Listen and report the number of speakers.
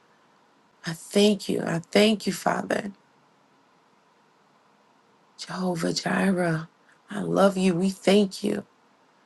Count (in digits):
1